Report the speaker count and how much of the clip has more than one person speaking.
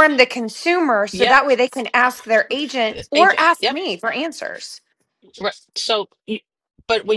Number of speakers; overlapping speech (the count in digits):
2, about 15%